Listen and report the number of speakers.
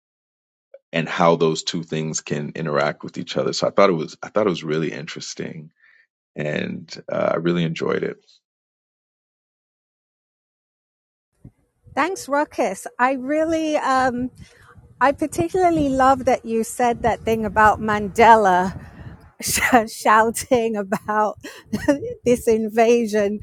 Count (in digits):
2